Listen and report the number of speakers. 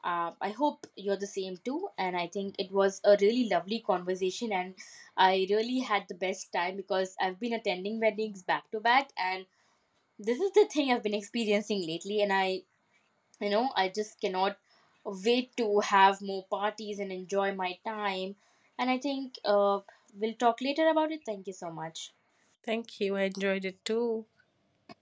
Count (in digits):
2